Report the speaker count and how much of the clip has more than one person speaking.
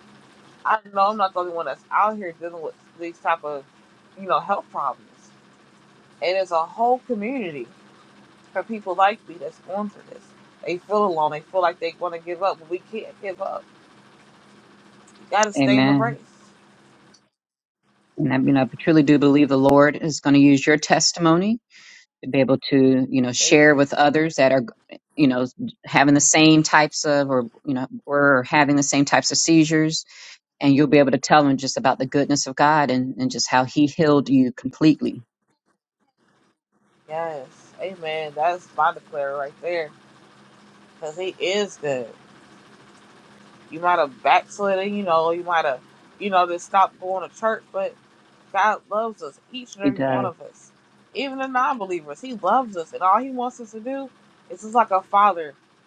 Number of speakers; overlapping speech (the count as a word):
two, about 3%